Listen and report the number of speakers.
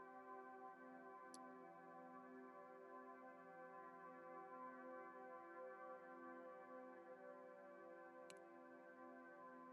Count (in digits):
0